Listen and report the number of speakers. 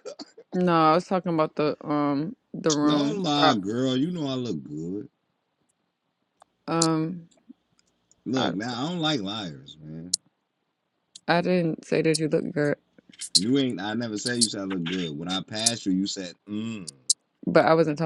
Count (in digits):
2